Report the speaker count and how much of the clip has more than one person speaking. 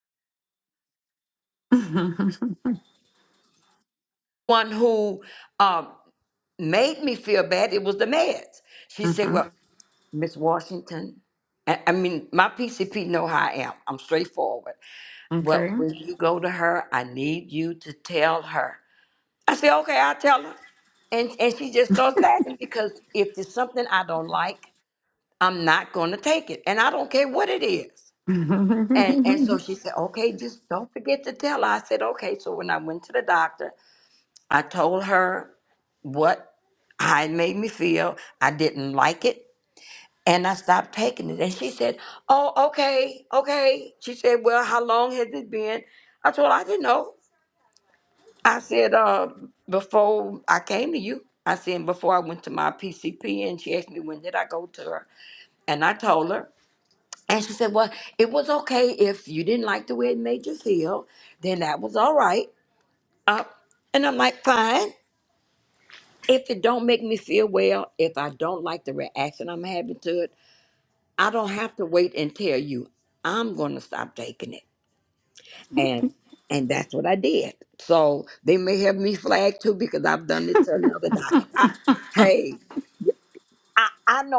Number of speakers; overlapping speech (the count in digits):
2, about 1%